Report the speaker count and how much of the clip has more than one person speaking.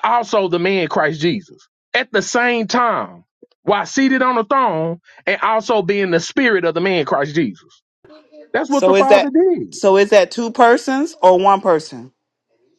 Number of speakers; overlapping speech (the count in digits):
2, about 4%